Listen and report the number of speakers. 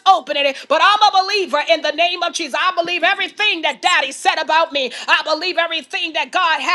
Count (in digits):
1